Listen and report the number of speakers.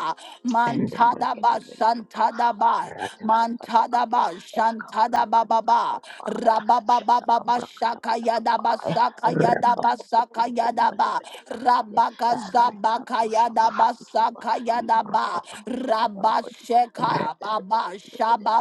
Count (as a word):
two